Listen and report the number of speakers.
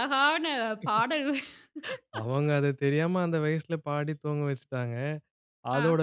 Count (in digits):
2